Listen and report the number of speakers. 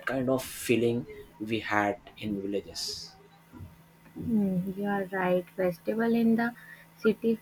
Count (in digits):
2